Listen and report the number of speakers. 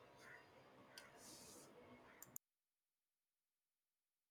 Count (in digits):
0